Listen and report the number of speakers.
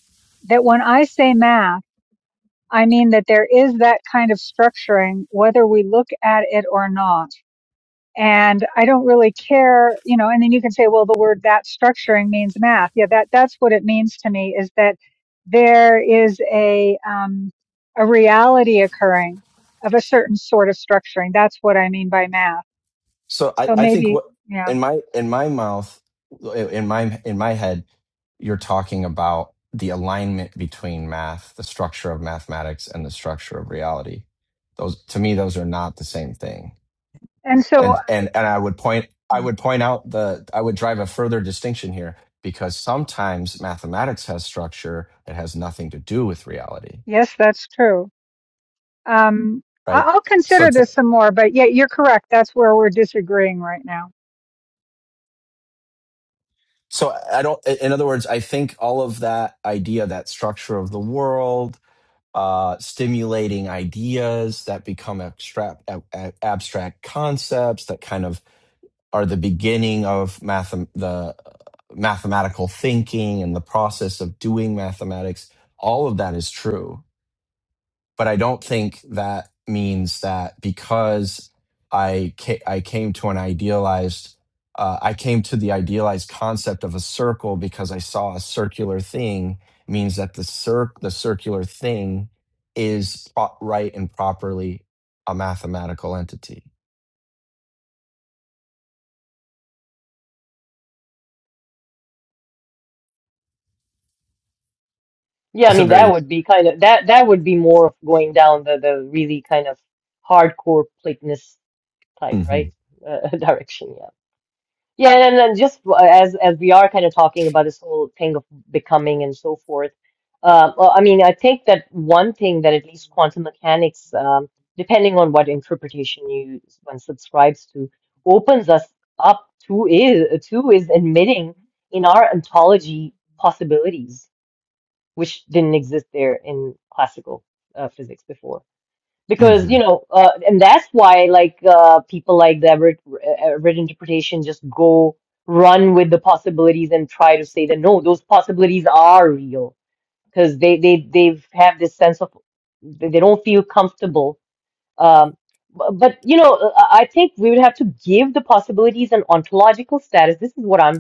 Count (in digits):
3